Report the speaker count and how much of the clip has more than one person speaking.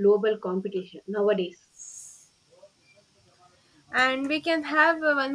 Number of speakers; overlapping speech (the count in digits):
2, no overlap